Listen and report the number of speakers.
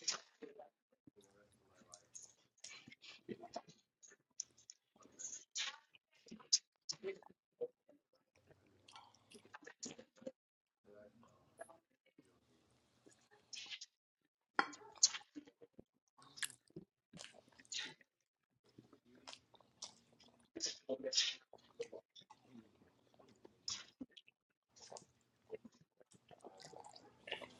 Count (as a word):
zero